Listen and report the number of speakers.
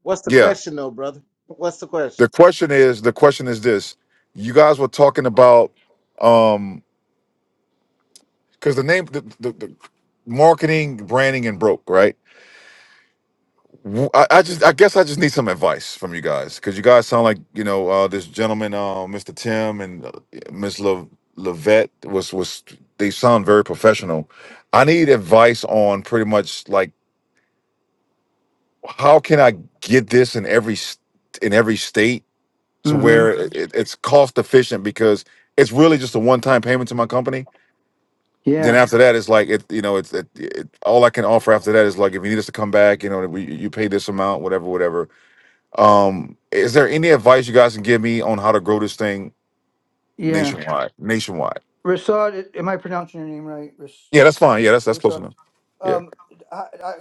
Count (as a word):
three